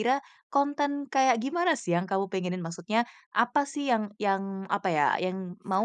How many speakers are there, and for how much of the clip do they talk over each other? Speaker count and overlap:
1, no overlap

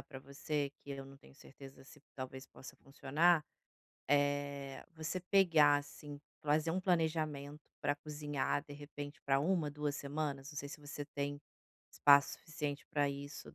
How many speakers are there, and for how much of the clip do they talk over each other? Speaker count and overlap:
1, no overlap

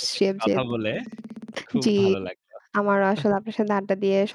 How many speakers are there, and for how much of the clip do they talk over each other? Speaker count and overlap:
2, about 15%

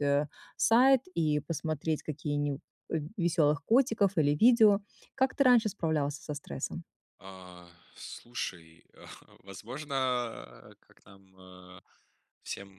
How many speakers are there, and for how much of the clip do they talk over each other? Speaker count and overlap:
2, no overlap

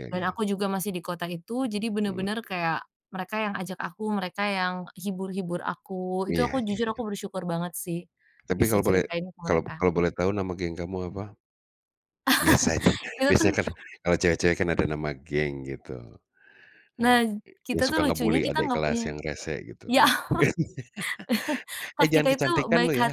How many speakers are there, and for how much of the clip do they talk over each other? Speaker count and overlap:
2, about 23%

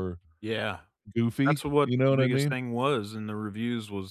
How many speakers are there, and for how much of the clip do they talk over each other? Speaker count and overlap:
2, about 27%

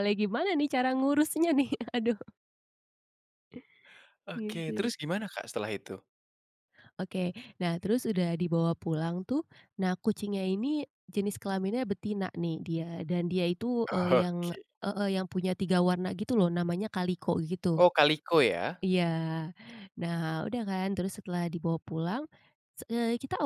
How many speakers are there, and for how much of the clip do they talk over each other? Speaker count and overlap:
2, about 6%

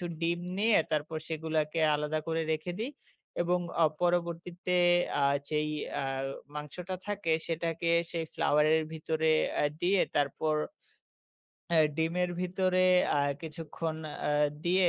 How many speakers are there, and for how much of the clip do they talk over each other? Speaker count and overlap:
1, no overlap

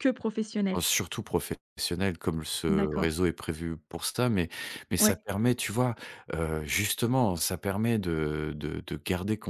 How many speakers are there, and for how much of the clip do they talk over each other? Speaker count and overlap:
2, about 7%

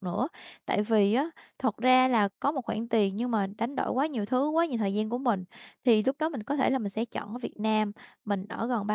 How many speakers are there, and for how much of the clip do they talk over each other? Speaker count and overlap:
1, no overlap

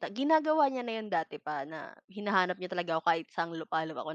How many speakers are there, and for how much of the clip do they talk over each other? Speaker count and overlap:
1, no overlap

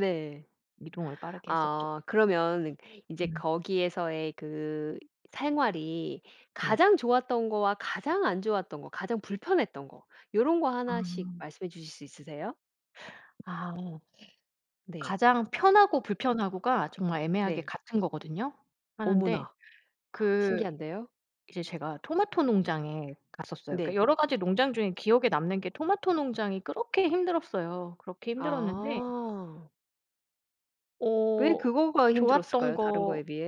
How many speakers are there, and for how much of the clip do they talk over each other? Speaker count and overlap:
2, about 13%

